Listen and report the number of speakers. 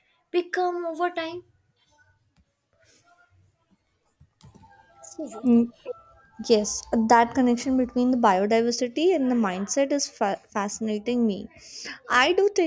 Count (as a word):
two